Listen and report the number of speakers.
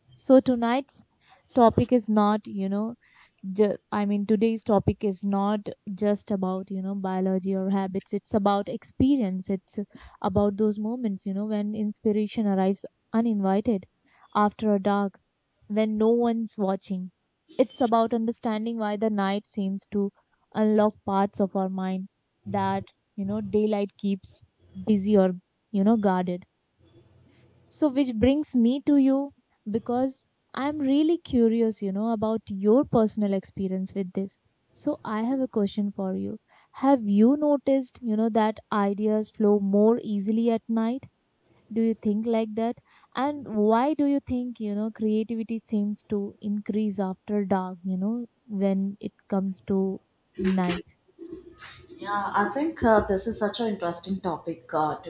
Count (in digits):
2